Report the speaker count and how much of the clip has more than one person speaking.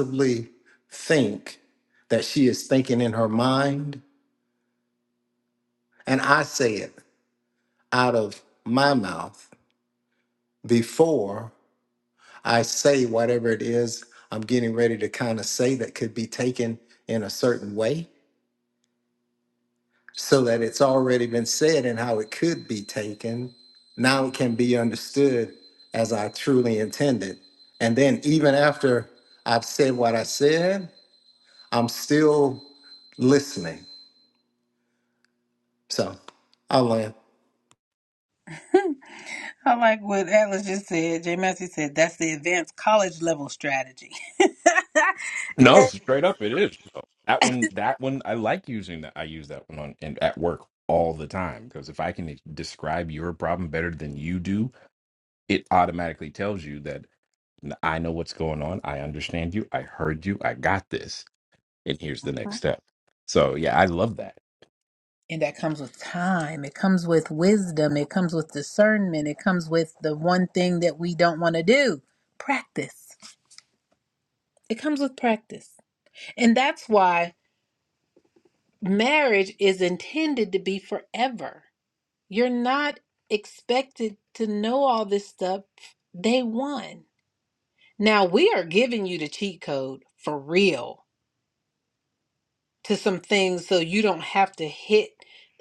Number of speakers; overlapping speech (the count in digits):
3, no overlap